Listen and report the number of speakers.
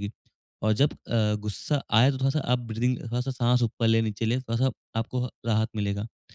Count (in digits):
1